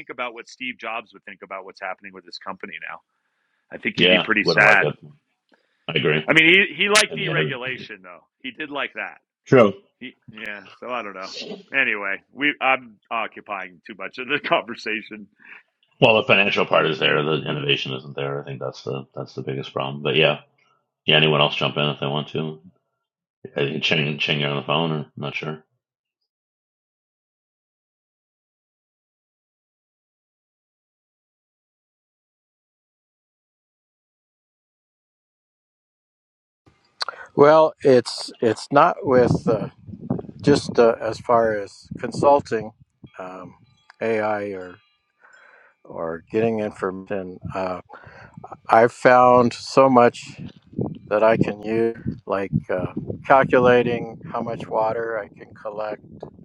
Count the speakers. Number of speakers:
3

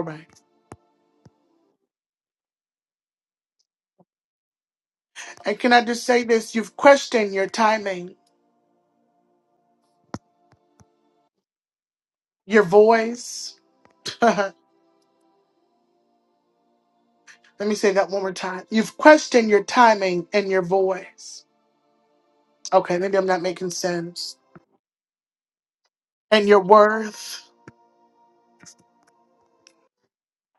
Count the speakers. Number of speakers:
1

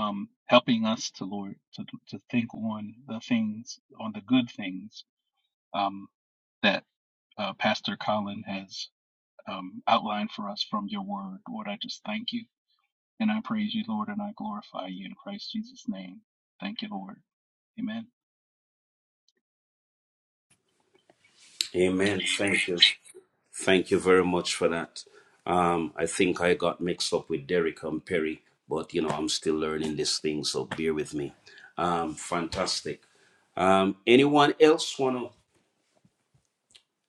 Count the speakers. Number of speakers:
2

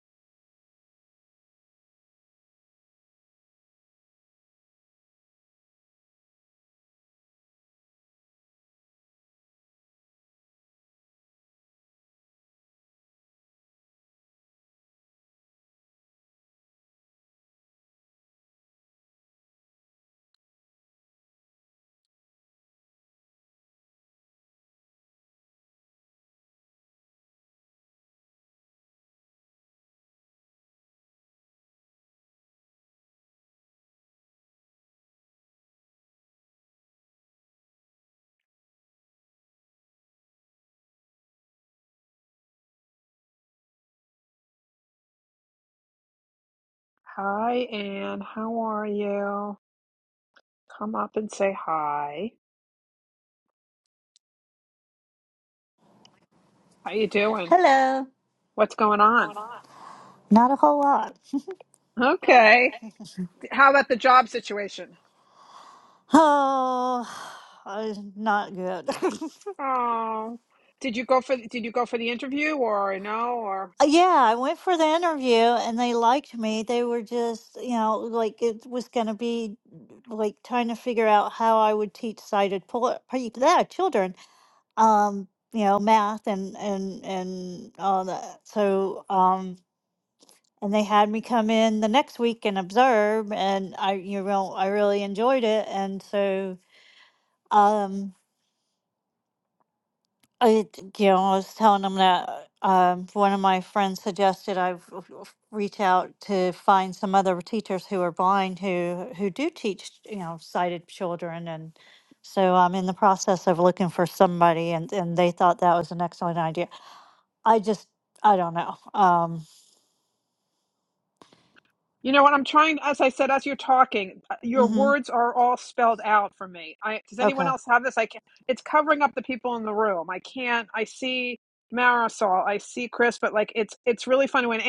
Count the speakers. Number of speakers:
2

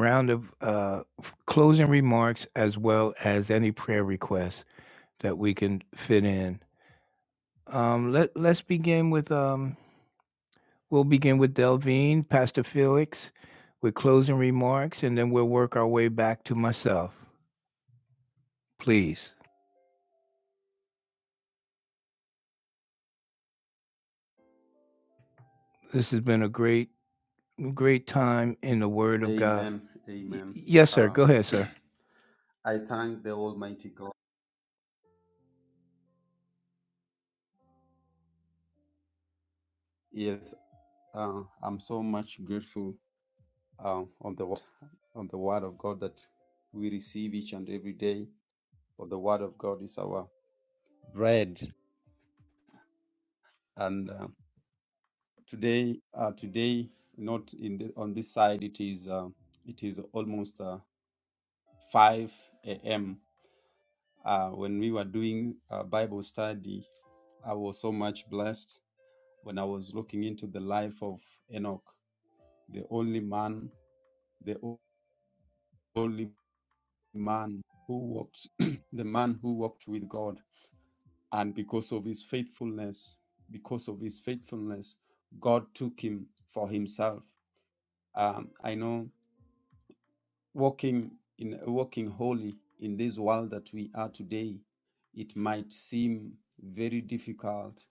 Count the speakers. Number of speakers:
2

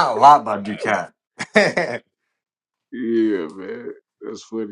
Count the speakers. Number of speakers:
2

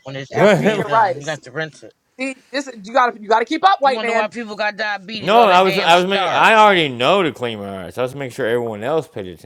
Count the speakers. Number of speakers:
3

